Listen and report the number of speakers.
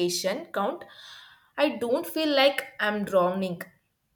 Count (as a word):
one